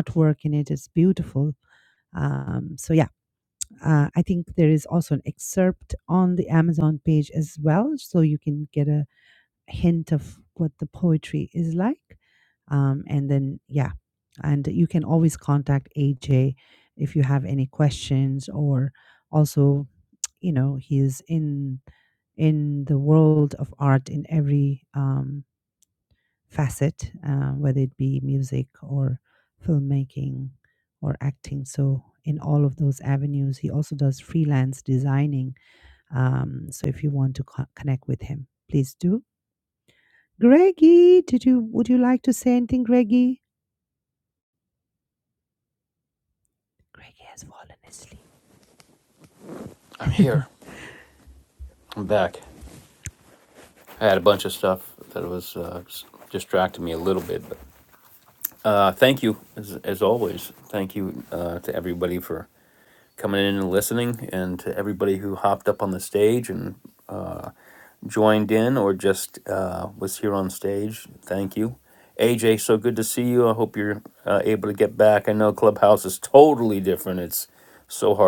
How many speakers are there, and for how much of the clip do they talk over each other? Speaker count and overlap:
2, under 1%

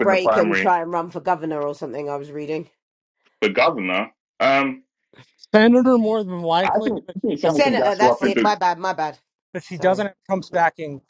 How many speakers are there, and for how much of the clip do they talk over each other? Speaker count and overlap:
3, about 25%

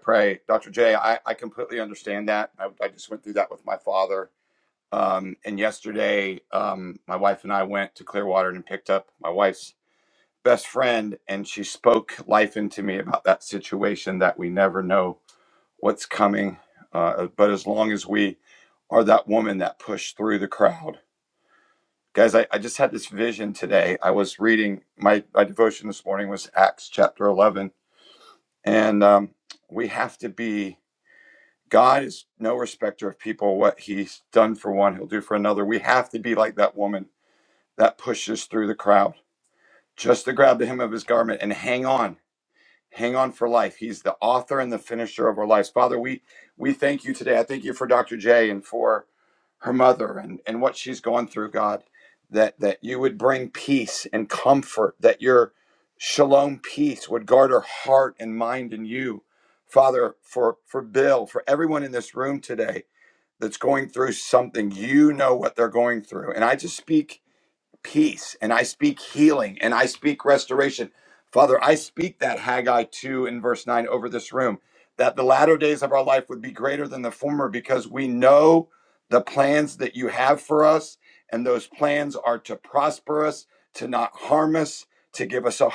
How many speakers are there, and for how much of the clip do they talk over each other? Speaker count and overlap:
1, no overlap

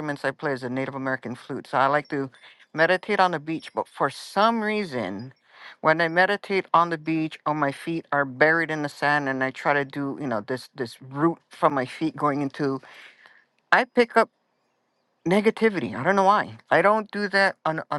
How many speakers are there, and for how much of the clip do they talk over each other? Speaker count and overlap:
1, no overlap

